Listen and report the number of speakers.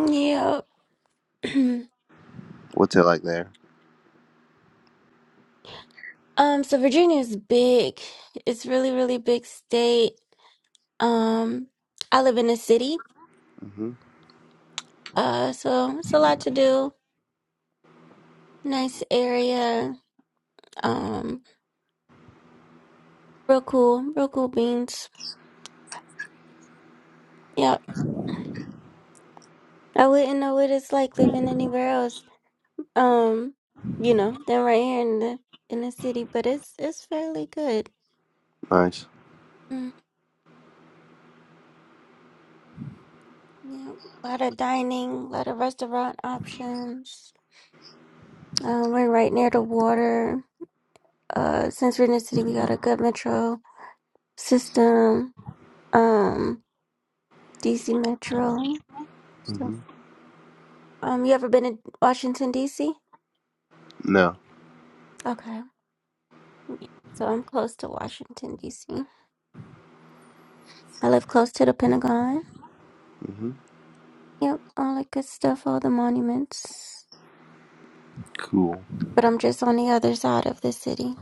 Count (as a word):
two